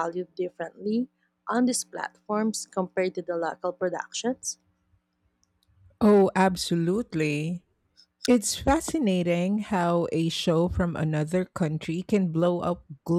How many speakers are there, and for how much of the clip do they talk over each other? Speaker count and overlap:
2, no overlap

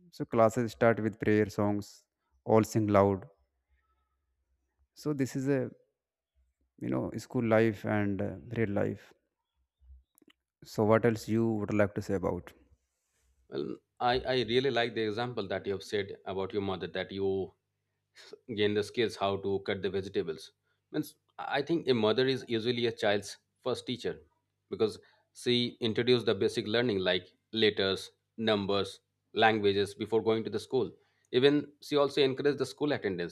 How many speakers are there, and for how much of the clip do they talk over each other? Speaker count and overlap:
2, no overlap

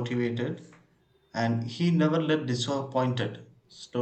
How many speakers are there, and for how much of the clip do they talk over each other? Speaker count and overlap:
1, no overlap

